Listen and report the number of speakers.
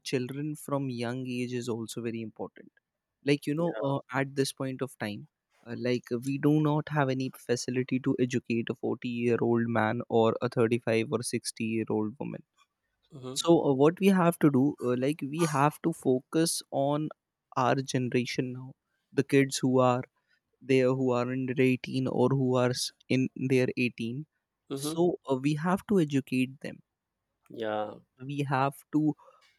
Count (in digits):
2